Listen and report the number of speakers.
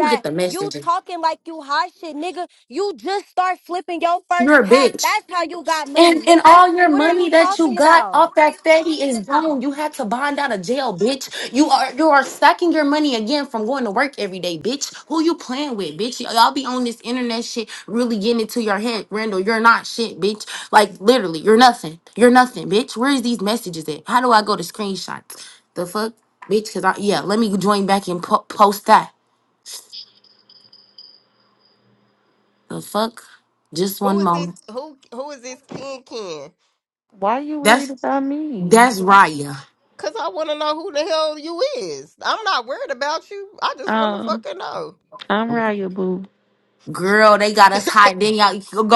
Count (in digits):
4